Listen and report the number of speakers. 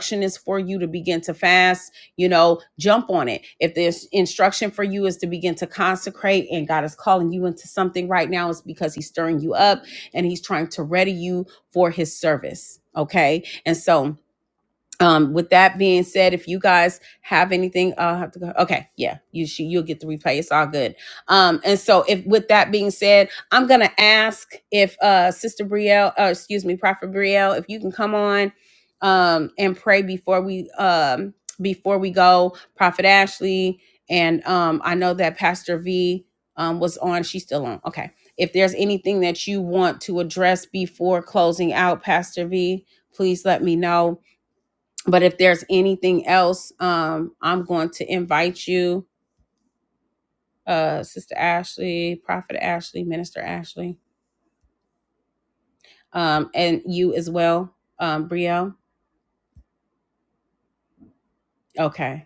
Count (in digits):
1